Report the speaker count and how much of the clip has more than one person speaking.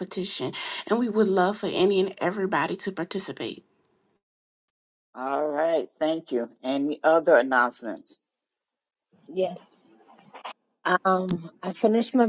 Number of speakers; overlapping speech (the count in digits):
3, no overlap